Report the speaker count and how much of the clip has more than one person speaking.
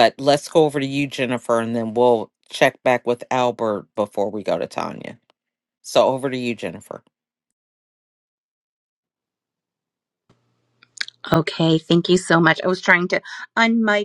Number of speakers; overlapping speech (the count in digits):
2, no overlap